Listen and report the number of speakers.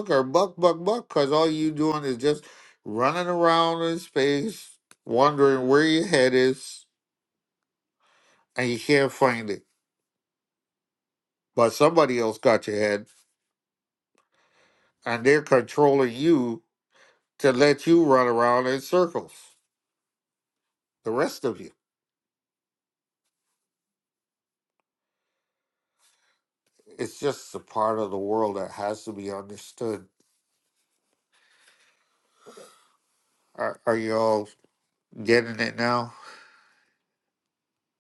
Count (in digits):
1